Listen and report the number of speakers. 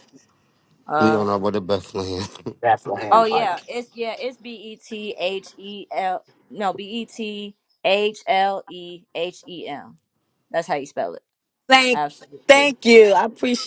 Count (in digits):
3